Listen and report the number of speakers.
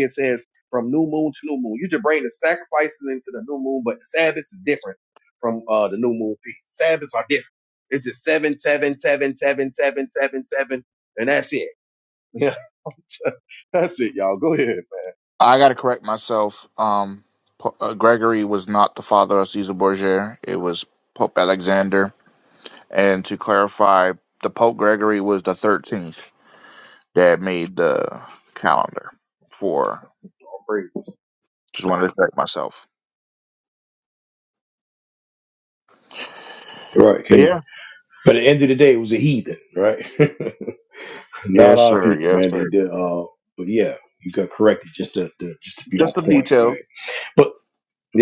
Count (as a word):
three